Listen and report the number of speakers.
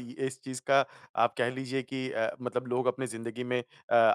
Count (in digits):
1